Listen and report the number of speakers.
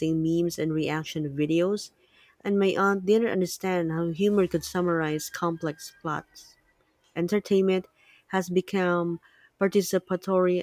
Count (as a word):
one